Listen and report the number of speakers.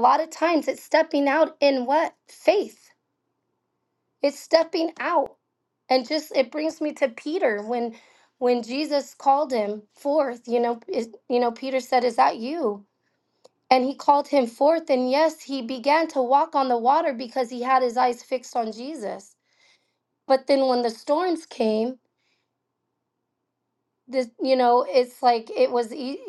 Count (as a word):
one